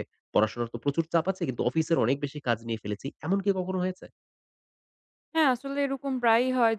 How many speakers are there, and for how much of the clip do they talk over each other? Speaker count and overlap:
2, no overlap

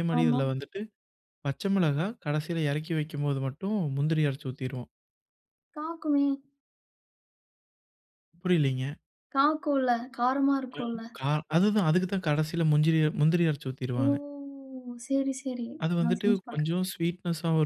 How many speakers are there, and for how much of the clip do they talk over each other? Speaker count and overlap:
2, about 7%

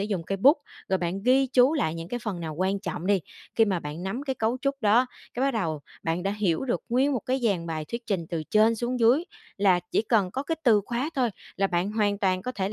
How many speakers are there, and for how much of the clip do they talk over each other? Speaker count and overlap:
1, no overlap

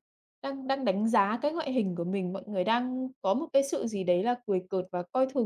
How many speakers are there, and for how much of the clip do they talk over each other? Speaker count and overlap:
1, no overlap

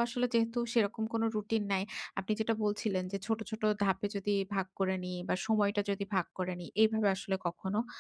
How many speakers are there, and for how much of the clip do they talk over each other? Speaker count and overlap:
1, no overlap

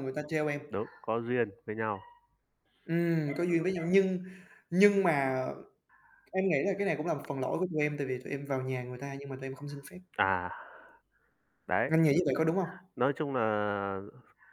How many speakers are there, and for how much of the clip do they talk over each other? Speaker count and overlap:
2, about 2%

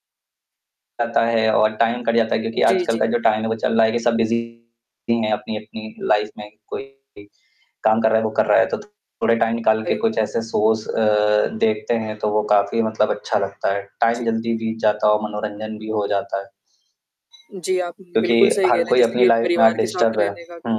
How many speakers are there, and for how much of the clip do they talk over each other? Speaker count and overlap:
2, about 17%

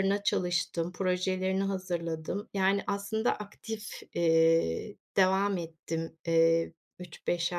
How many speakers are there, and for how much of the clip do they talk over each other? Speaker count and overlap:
1, no overlap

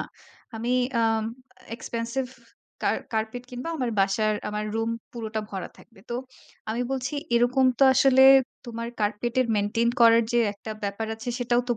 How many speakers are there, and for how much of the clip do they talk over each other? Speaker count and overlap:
1, no overlap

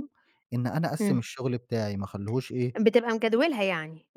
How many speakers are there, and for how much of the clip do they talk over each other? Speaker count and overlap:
2, about 5%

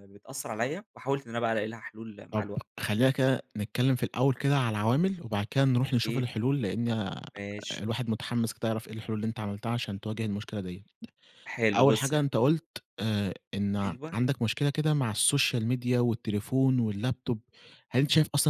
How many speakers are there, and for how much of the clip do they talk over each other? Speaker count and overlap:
2, about 7%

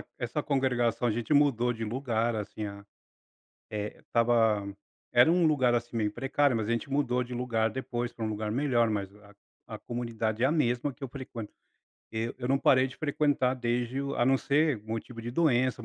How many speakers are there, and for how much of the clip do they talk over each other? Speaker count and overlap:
1, no overlap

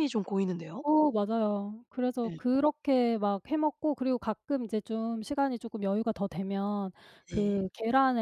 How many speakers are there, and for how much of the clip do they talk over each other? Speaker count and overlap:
2, about 5%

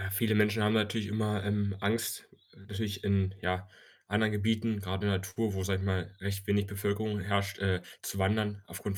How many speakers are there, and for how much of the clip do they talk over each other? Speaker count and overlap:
1, no overlap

